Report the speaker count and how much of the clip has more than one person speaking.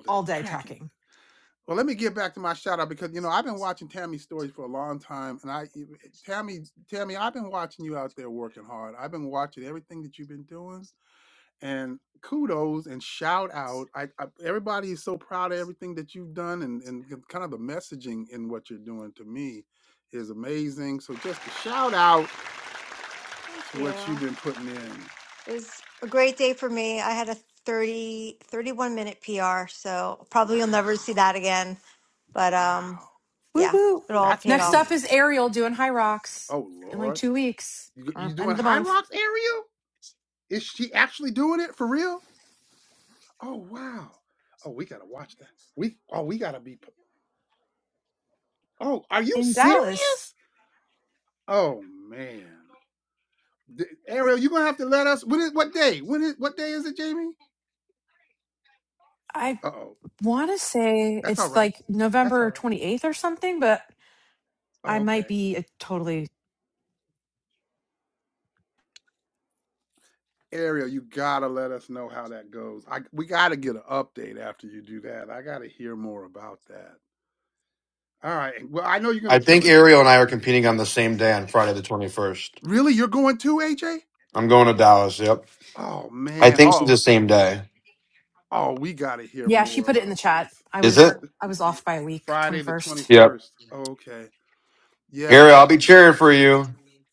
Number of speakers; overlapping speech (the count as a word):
four, about 10%